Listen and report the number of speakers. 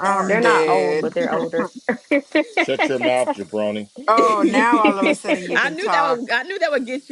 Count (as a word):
four